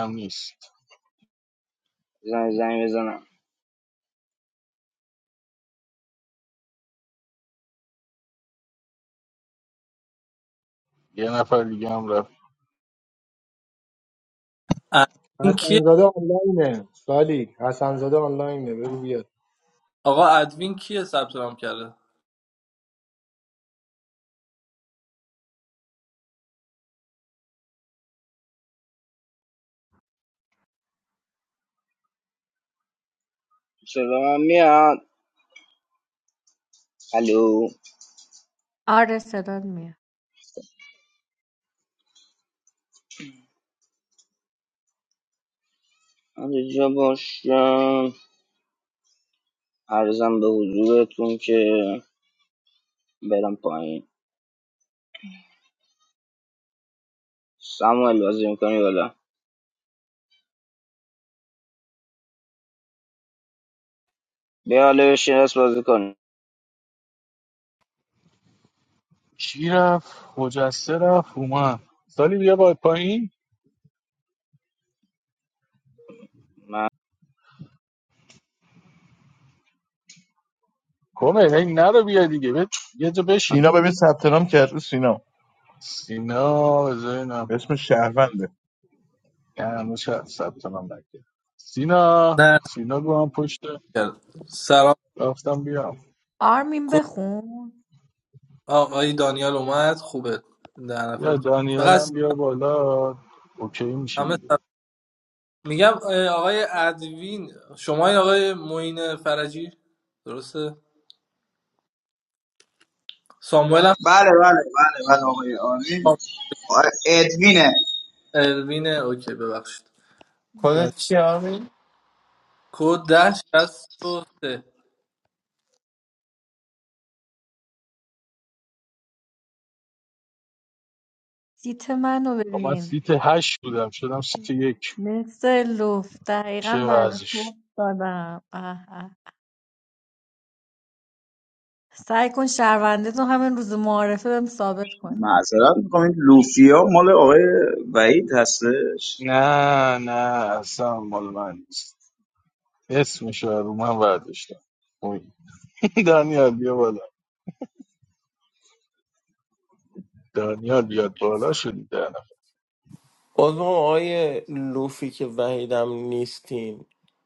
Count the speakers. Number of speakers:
8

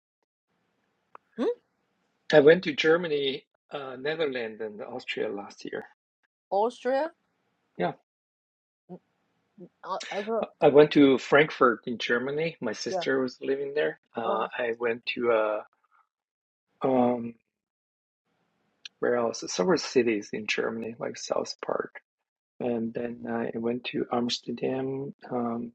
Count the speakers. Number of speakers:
2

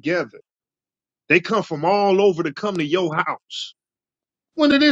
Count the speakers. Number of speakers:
1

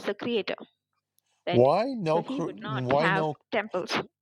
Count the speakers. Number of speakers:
2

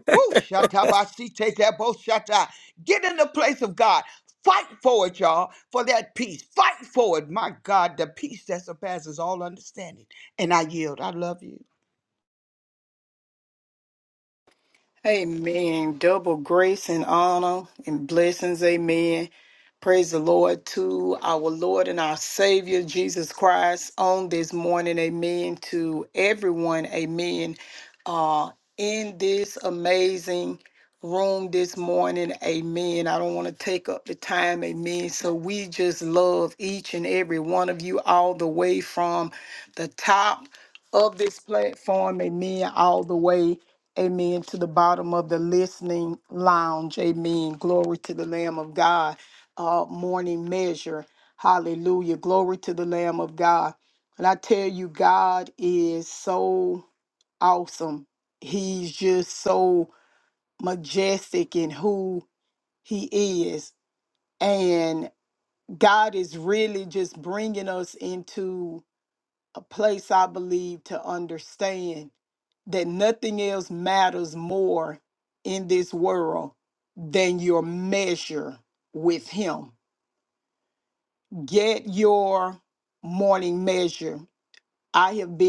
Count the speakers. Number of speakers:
2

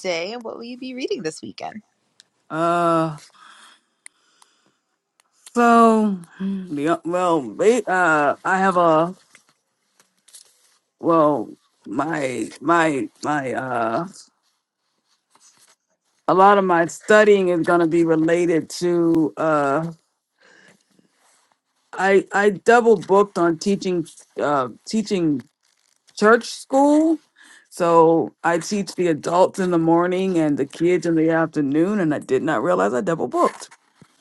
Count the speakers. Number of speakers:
2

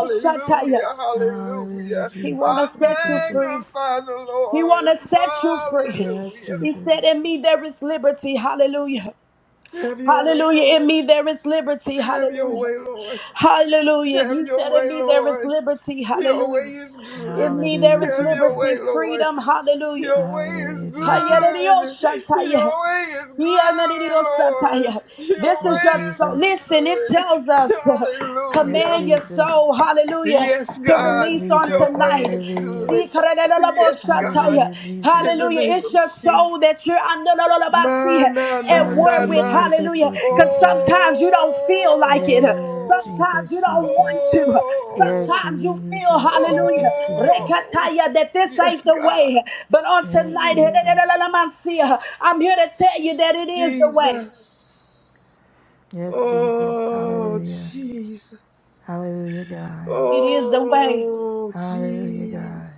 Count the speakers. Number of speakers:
3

